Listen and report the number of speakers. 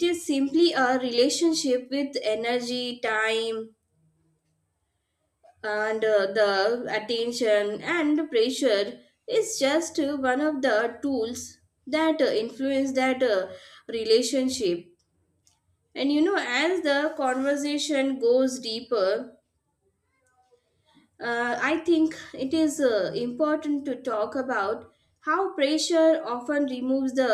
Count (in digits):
1